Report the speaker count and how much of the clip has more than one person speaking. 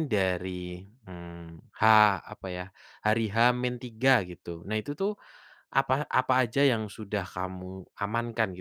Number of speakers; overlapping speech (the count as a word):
one, no overlap